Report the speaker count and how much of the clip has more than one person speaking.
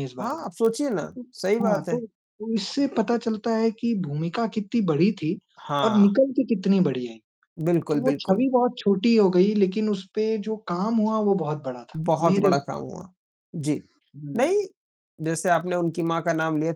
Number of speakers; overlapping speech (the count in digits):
2, about 13%